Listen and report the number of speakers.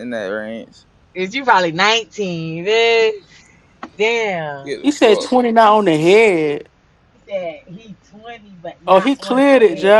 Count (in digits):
3